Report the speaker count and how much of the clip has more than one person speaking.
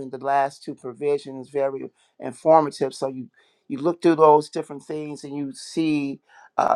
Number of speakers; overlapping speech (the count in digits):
1, no overlap